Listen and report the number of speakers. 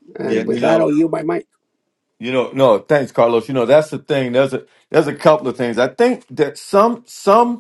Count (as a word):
two